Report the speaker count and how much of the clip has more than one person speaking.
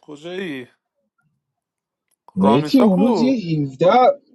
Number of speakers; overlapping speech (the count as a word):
two, about 22%